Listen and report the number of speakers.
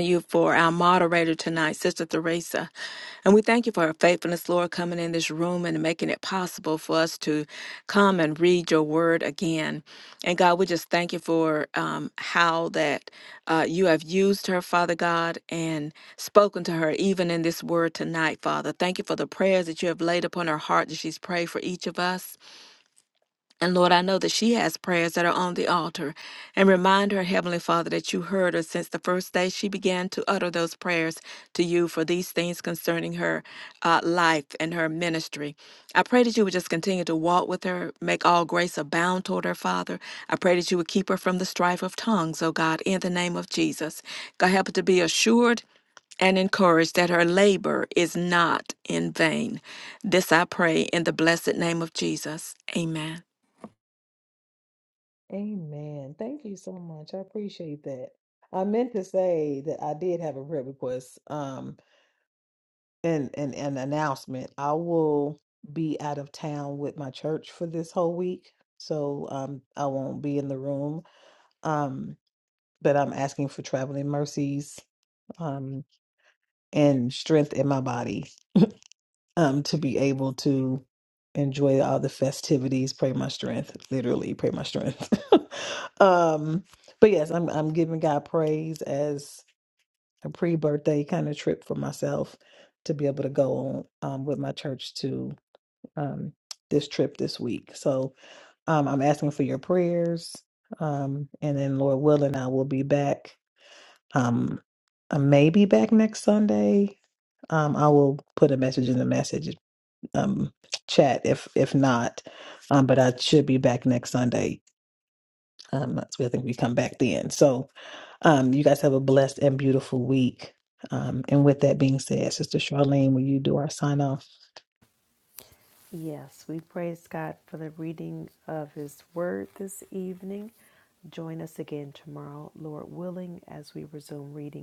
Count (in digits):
3